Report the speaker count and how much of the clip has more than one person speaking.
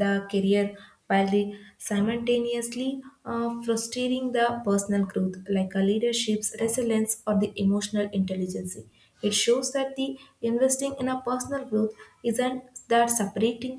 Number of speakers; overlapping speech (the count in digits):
1, no overlap